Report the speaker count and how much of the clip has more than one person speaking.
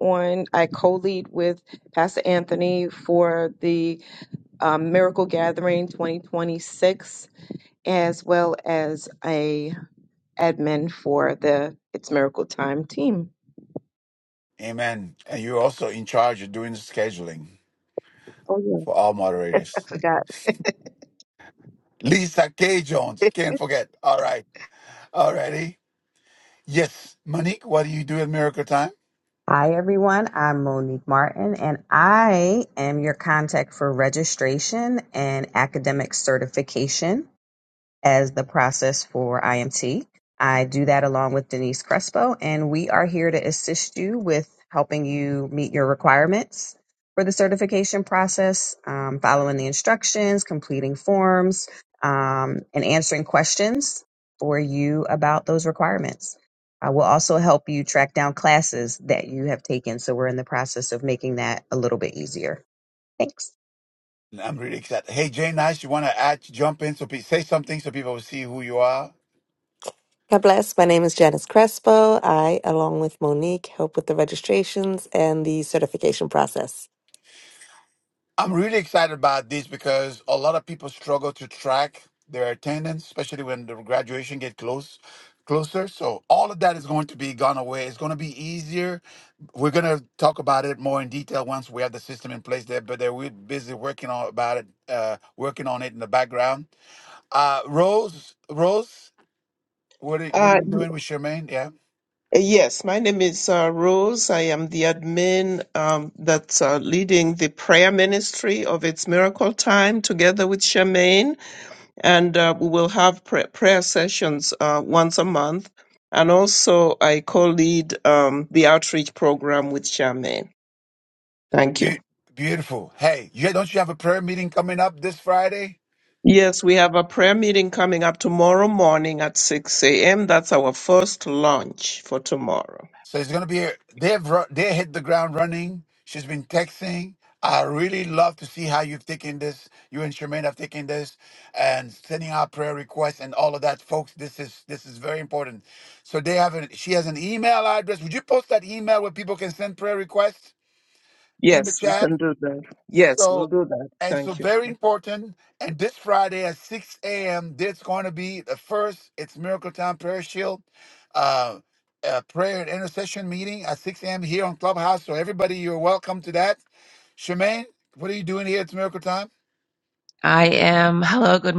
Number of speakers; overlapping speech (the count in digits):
6, about 1%